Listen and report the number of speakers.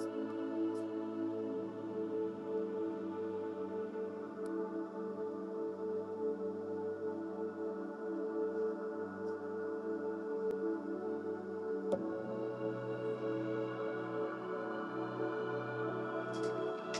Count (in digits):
0